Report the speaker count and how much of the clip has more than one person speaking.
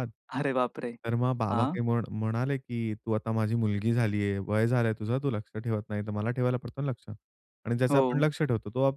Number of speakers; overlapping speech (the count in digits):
2, about 8%